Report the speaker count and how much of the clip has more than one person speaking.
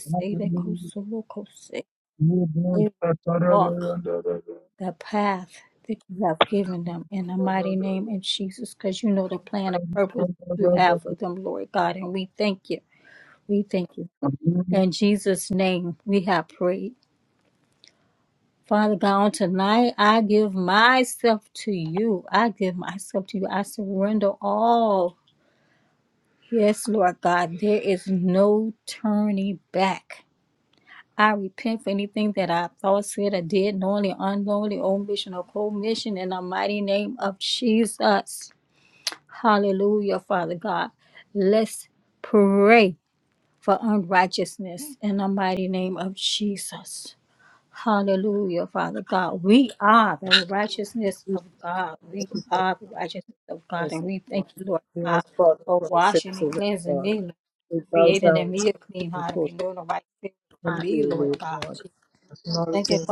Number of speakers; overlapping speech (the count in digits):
3, about 10%